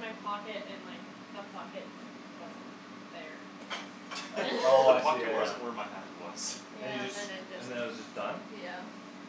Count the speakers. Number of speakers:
three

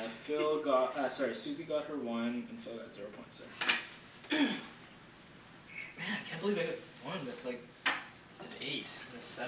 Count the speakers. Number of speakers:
one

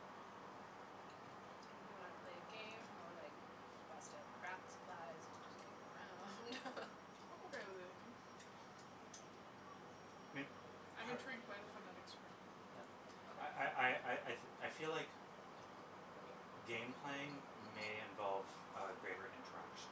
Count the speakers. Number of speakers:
three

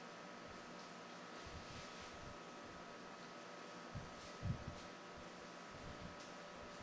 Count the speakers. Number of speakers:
zero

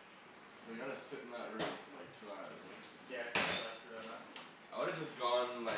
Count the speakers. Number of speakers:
two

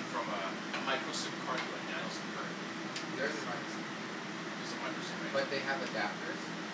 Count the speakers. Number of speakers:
two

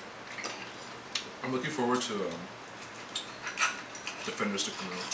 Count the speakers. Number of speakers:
one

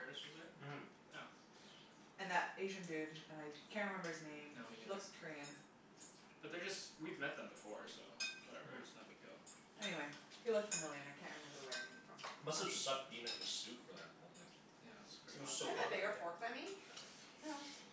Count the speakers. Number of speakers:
four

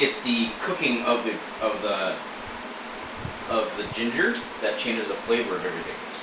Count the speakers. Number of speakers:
one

